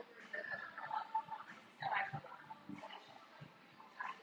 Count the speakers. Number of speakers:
0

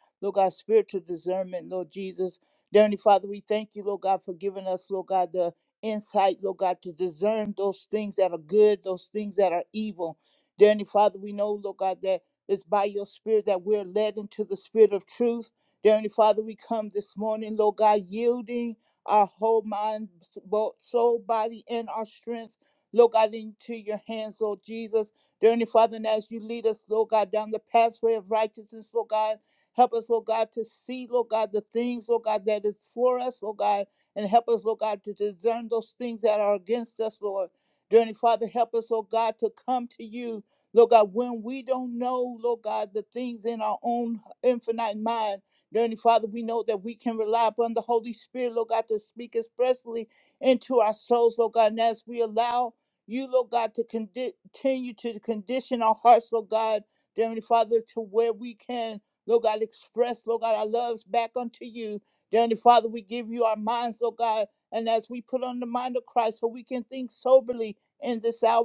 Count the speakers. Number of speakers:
1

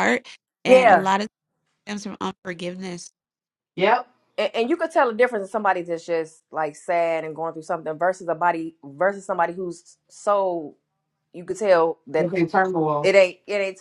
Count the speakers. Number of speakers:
3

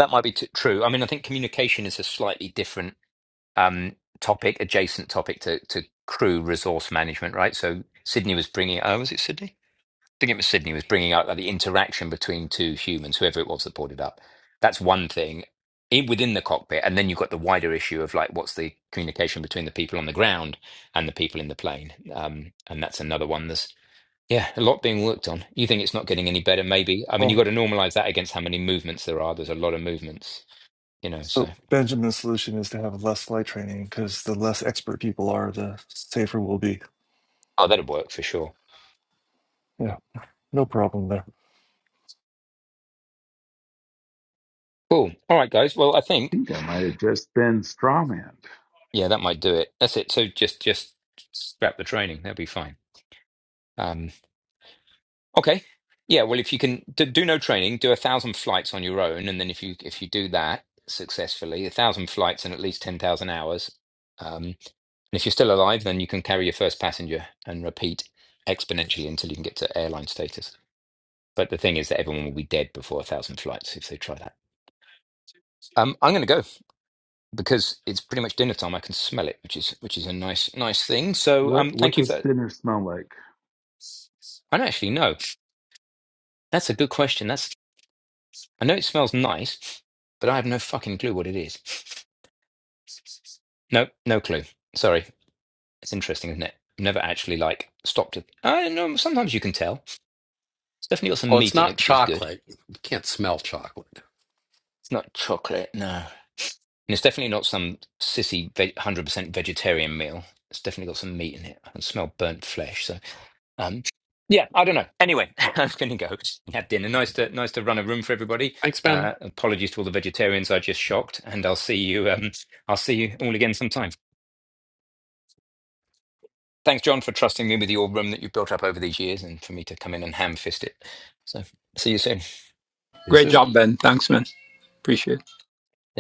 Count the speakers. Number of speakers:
5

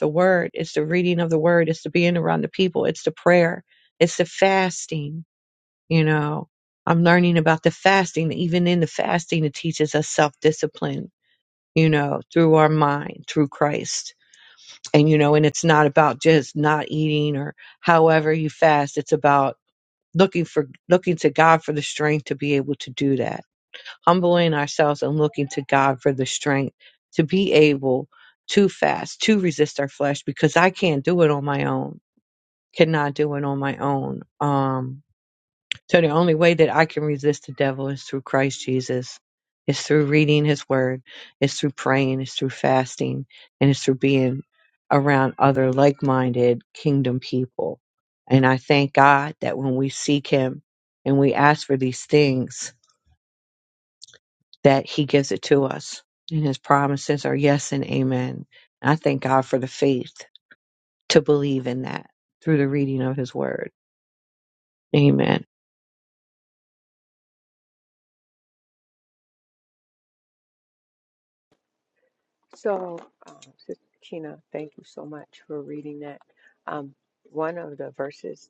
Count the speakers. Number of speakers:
2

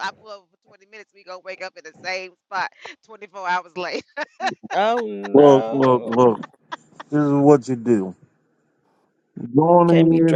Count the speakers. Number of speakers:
3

